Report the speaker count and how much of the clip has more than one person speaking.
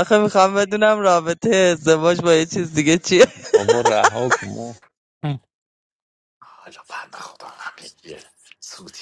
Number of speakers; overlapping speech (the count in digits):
3, no overlap